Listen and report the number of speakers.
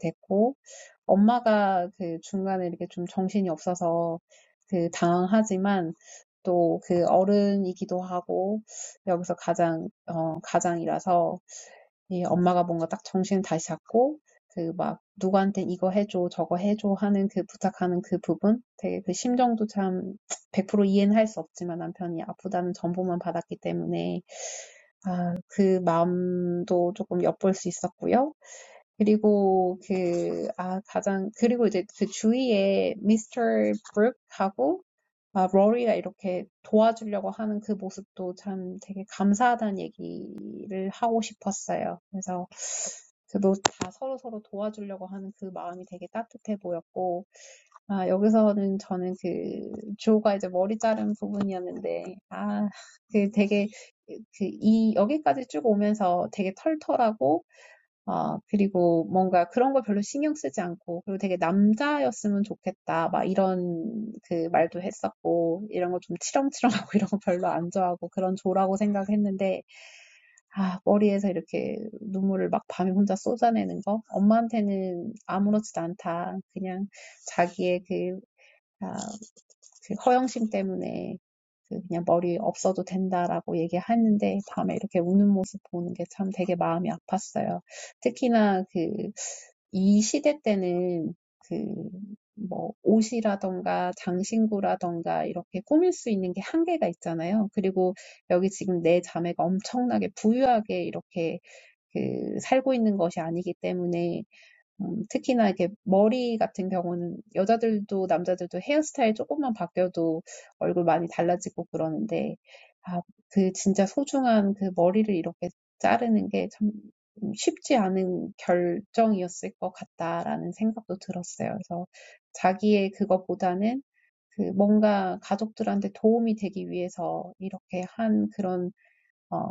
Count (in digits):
1